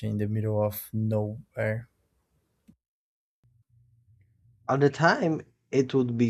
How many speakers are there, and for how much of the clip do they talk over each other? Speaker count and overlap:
2, no overlap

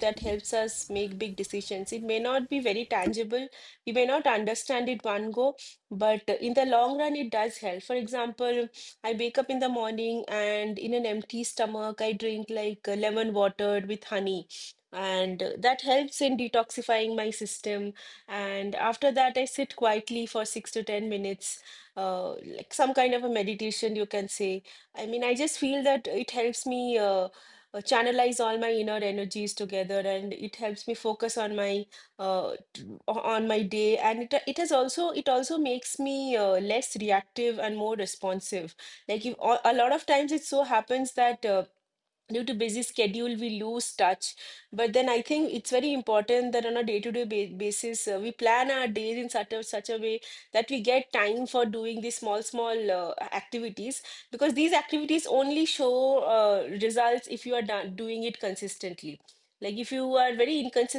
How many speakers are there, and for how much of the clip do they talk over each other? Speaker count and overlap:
1, no overlap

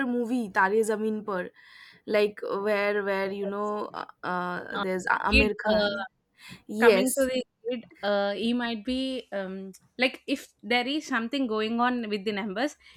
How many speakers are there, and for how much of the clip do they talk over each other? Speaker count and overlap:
2, about 13%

